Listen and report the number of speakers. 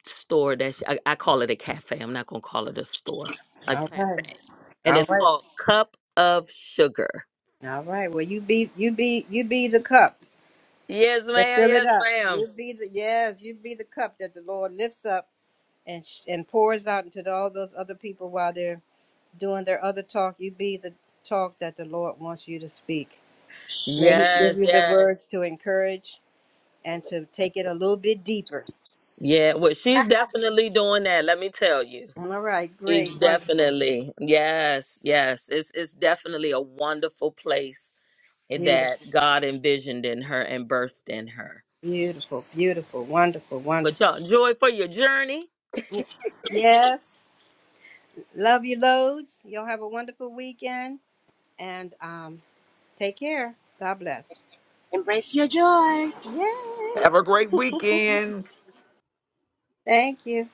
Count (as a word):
four